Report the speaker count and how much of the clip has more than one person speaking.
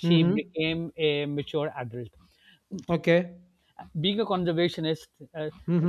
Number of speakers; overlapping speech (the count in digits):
2, about 7%